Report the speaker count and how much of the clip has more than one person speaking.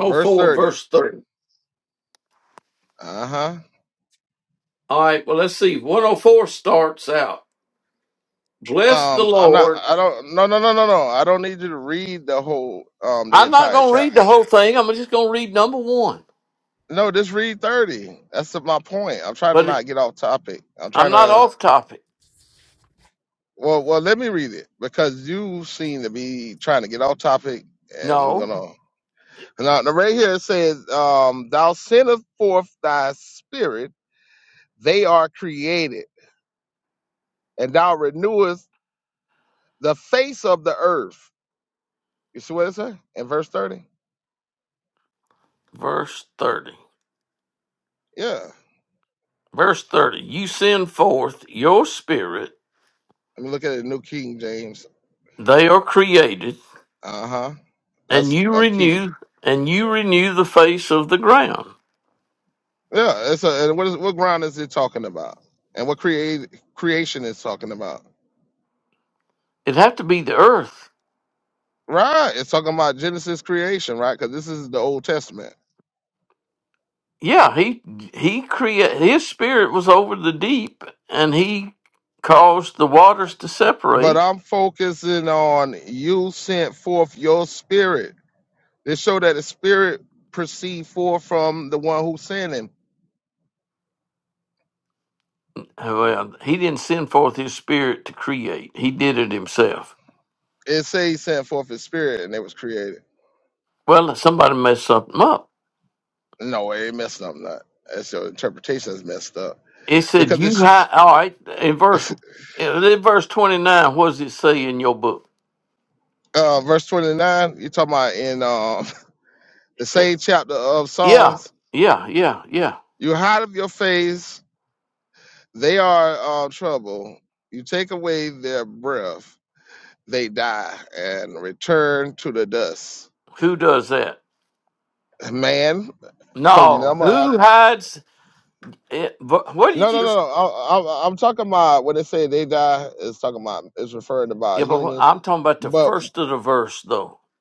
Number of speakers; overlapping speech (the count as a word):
two, about 5%